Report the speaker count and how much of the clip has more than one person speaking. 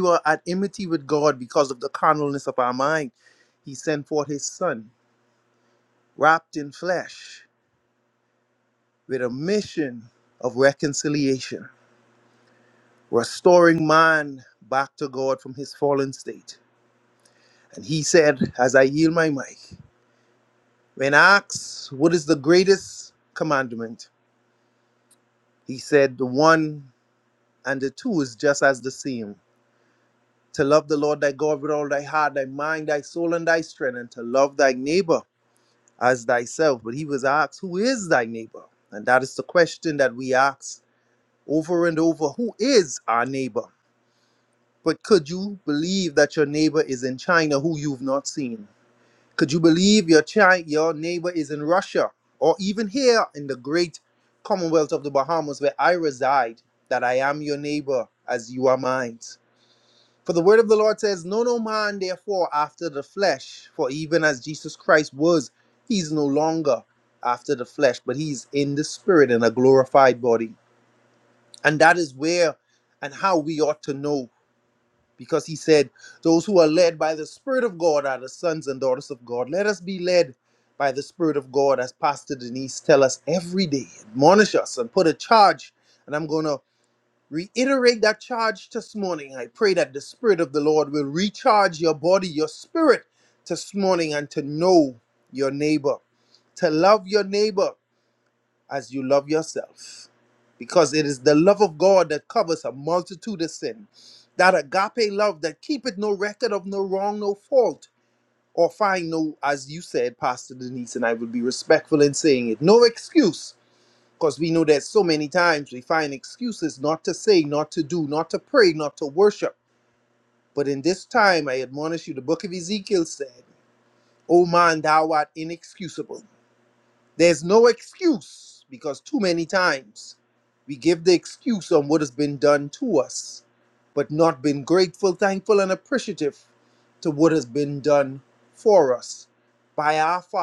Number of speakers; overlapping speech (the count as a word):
one, no overlap